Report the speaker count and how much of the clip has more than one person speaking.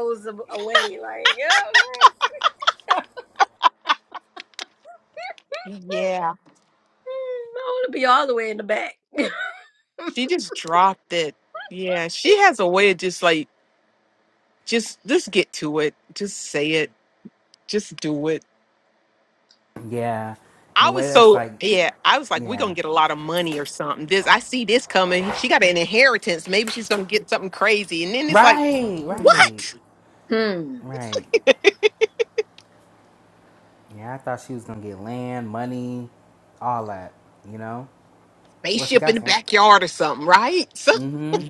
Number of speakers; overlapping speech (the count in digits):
3, about 6%